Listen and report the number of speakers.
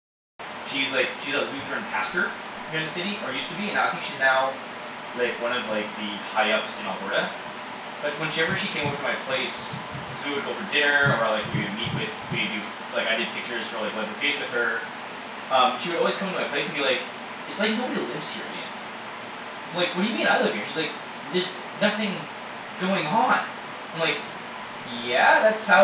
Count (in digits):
1